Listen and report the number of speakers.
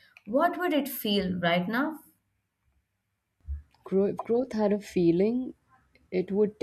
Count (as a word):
two